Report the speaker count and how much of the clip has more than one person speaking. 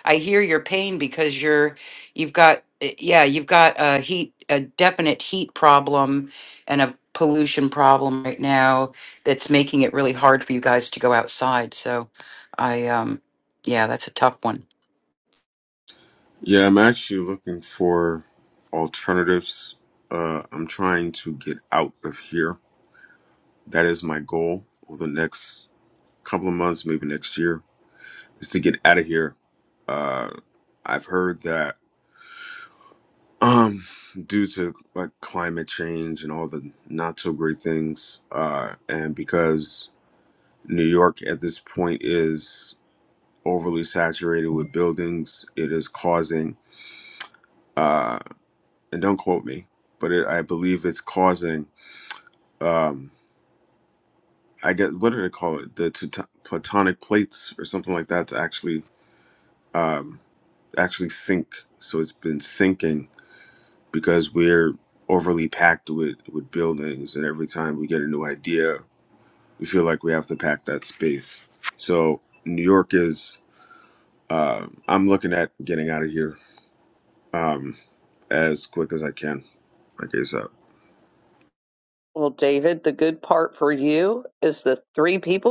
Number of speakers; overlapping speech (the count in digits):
3, no overlap